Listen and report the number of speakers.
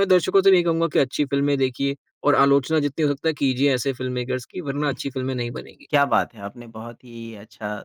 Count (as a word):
two